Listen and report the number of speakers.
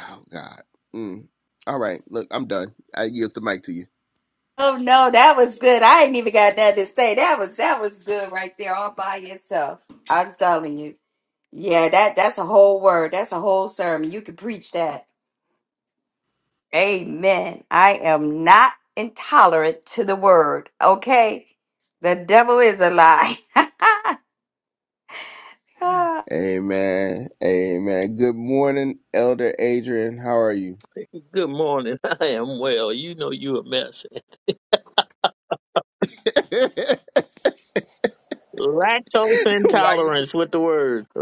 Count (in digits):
3